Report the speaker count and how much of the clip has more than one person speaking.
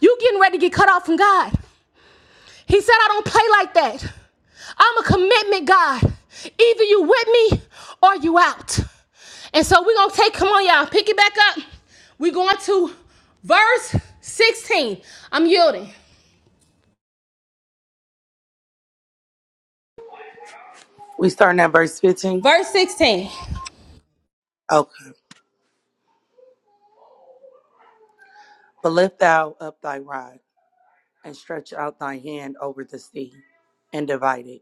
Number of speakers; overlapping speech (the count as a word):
two, under 1%